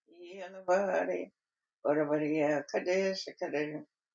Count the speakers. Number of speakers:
1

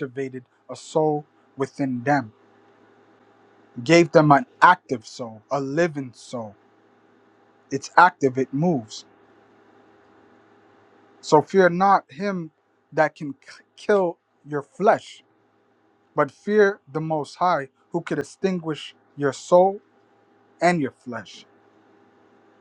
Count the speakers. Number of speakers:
1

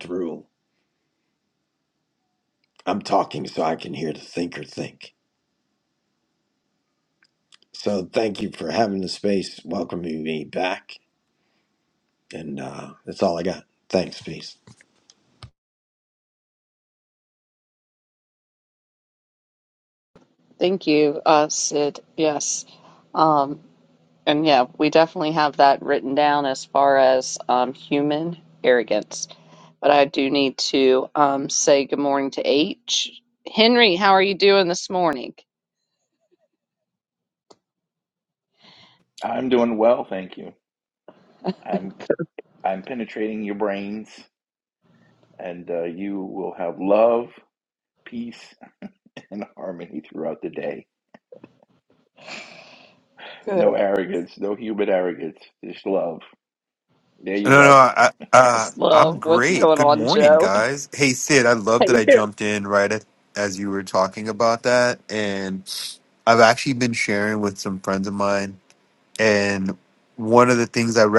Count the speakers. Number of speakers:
4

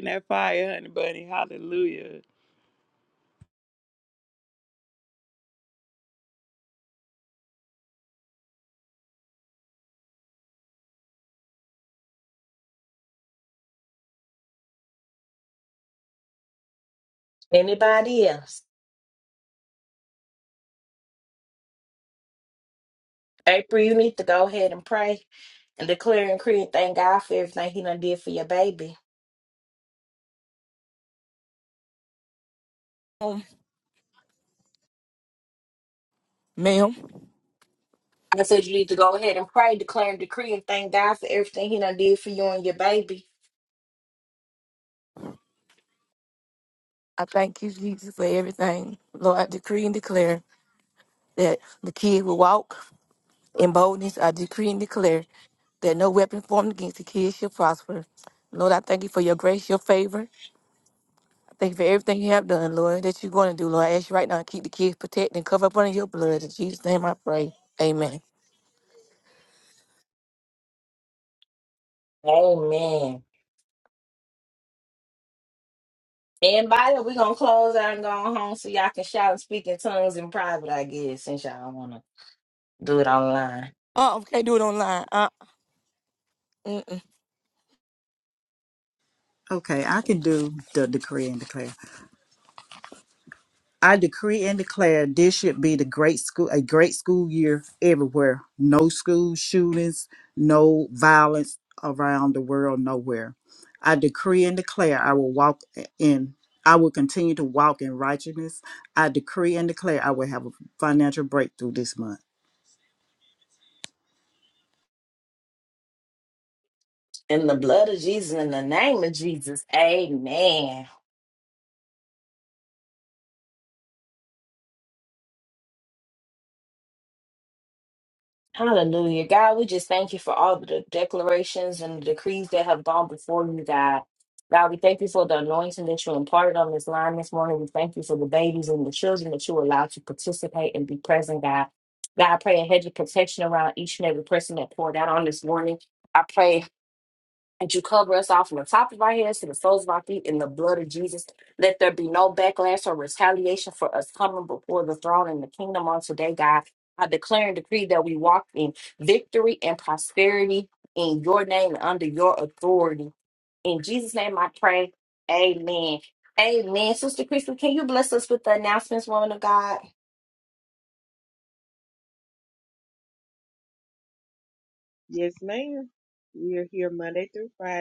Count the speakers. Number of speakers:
5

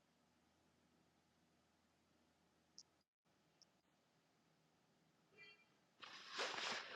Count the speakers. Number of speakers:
0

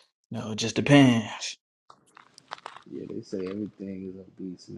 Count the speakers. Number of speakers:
2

